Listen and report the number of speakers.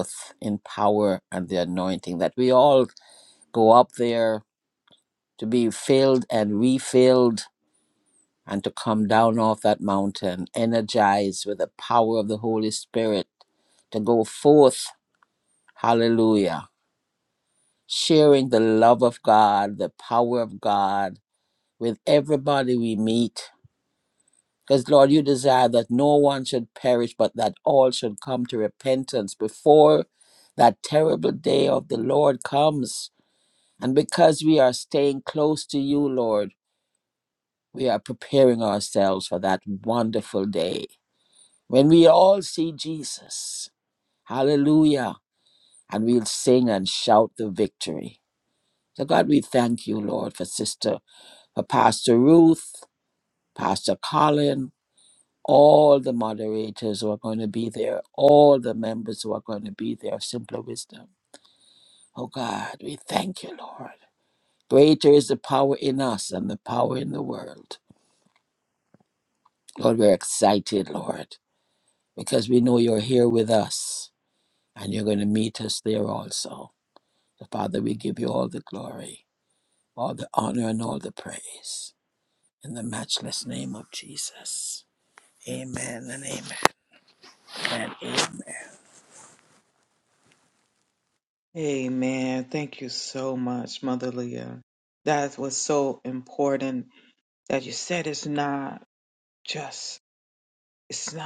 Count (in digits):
2